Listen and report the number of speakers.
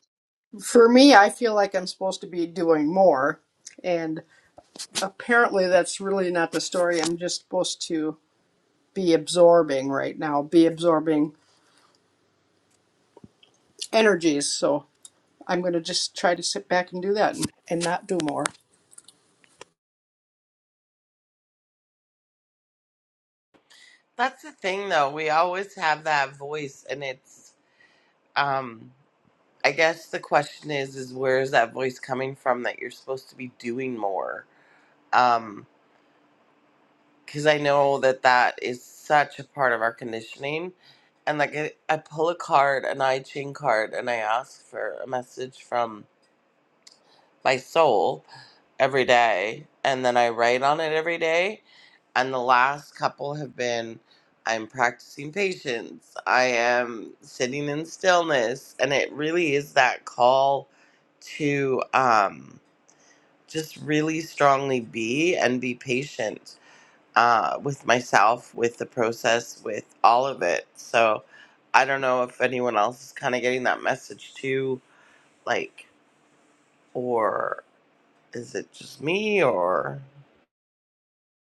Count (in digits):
2